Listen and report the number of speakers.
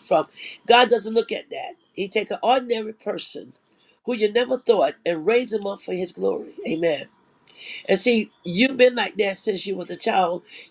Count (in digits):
1